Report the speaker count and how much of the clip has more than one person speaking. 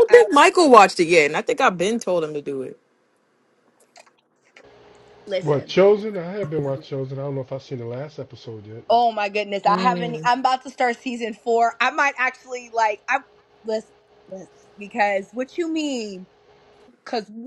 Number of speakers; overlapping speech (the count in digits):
3, about 7%